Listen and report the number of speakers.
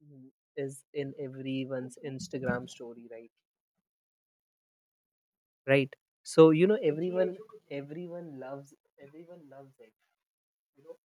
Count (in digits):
1